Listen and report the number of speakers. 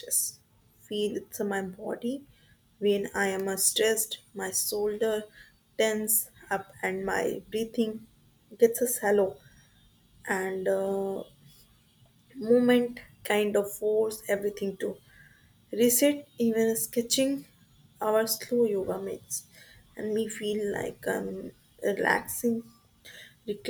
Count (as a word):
one